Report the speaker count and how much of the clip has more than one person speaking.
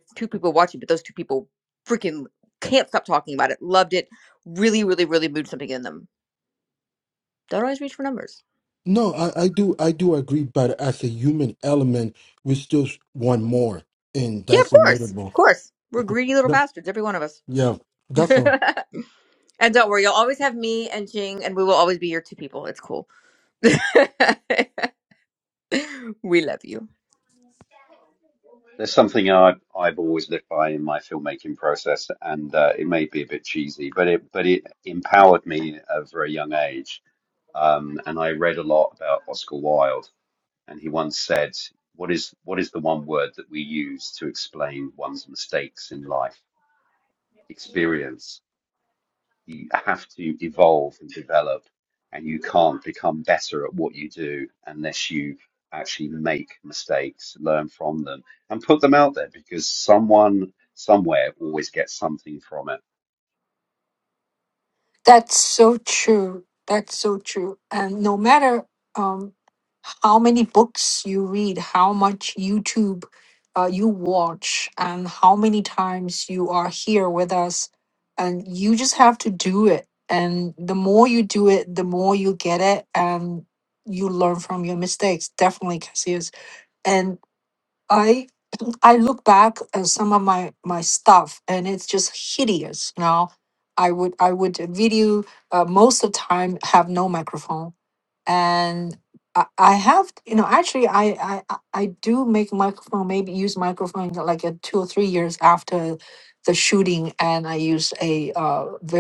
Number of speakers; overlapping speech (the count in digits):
4, about 1%